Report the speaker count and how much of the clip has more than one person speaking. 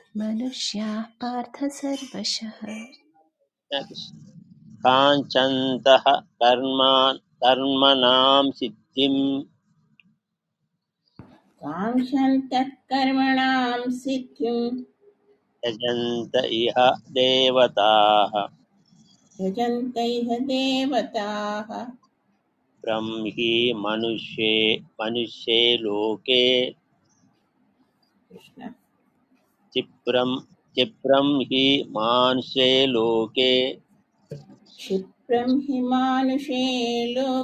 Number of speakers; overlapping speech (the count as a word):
three, no overlap